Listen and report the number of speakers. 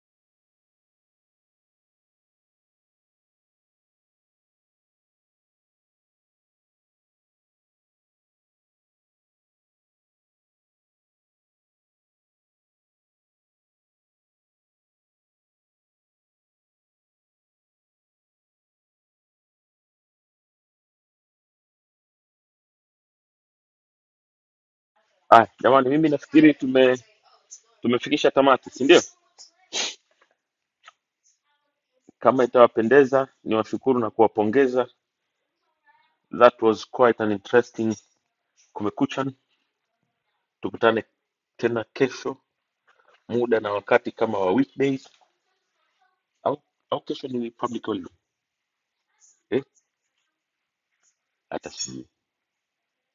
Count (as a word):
one